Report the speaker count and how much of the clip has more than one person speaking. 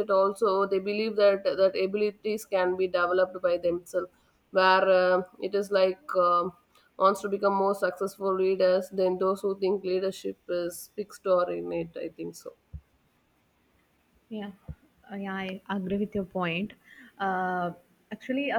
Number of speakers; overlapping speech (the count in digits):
2, no overlap